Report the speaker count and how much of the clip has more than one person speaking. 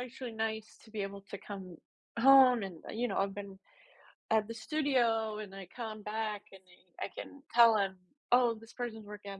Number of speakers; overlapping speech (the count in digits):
1, no overlap